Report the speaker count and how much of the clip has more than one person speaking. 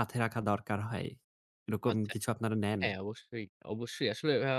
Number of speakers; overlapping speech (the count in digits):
2, about 7%